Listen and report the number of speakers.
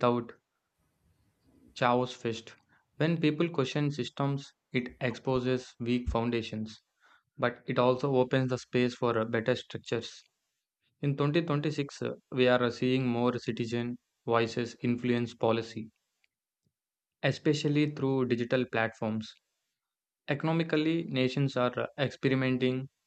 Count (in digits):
1